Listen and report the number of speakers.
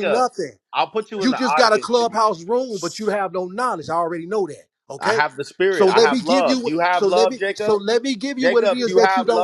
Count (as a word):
two